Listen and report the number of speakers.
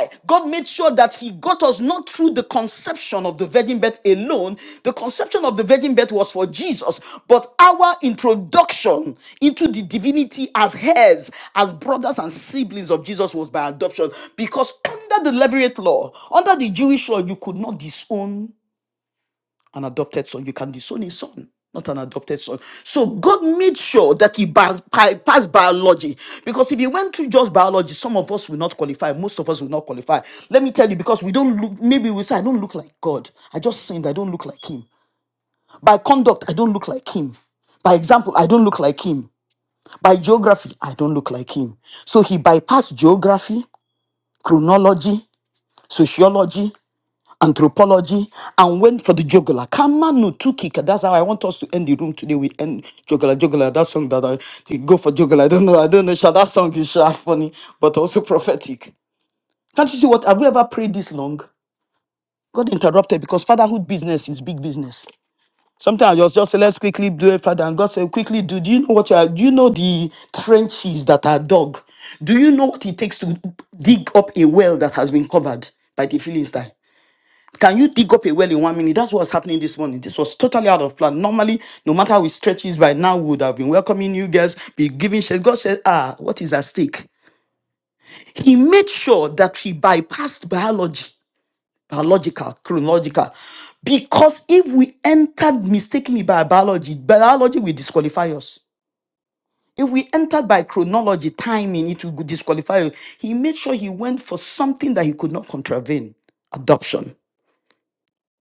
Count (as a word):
one